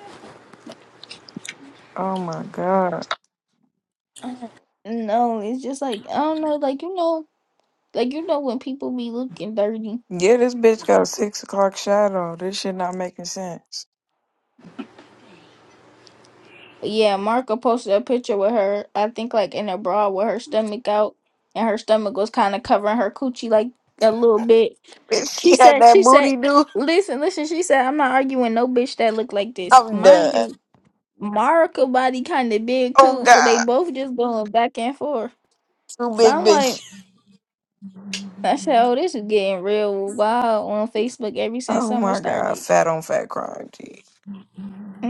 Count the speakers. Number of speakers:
2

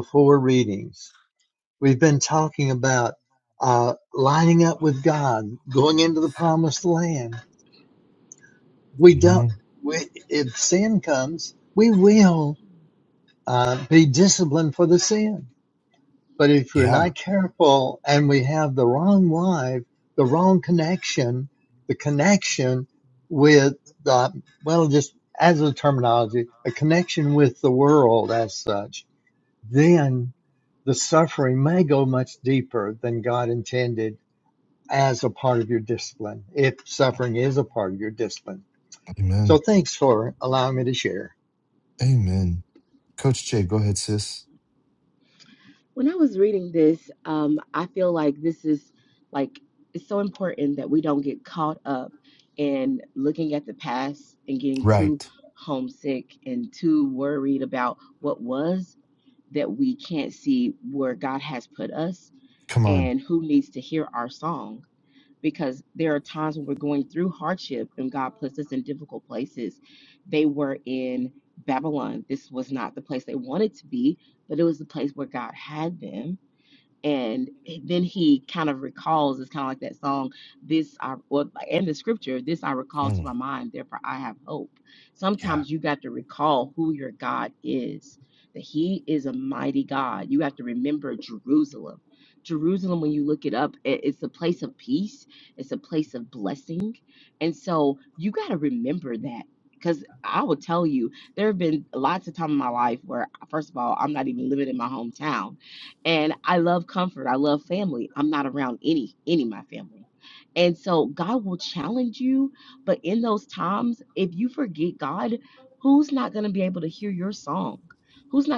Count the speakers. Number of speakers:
3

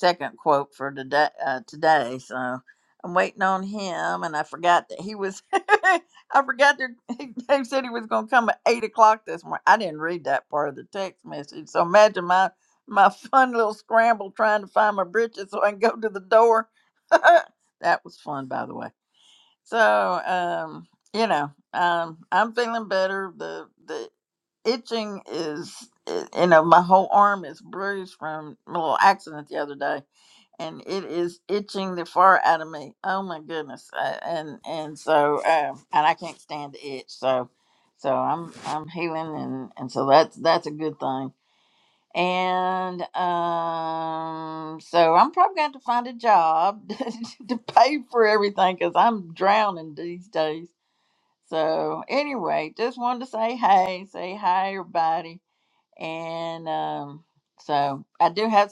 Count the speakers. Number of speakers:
1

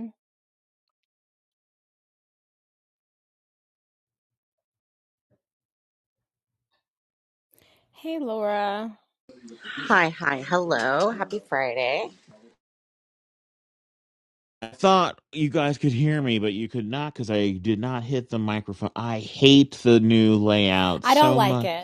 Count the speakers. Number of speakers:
3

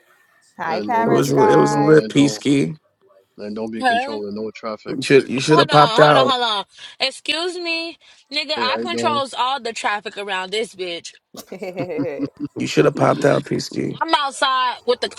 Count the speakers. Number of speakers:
4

